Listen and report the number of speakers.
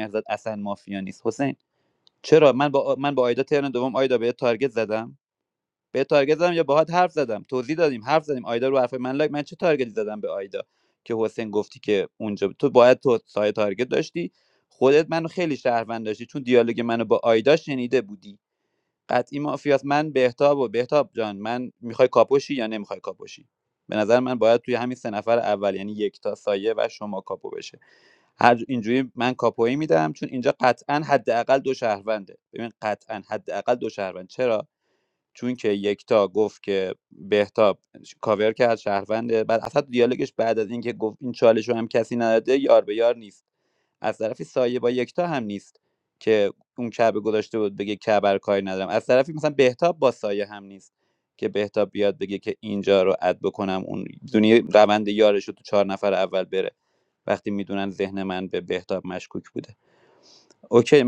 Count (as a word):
one